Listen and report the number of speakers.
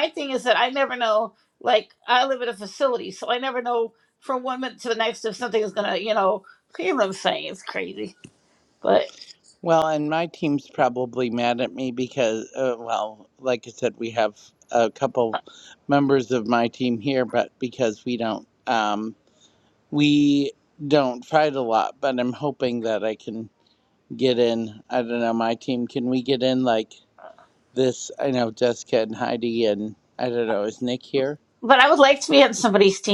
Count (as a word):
two